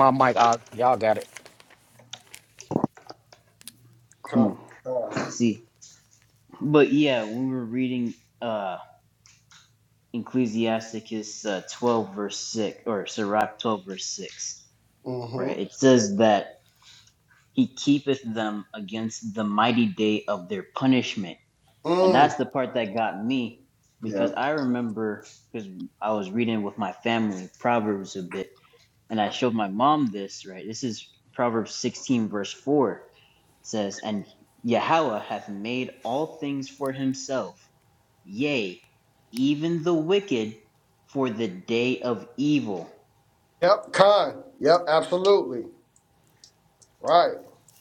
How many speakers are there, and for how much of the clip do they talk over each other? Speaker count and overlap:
three, about 3%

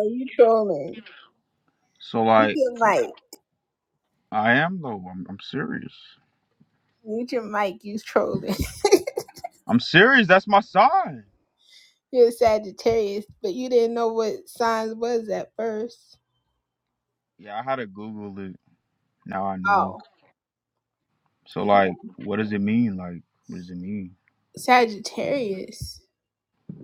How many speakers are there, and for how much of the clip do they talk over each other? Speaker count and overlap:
two, about 3%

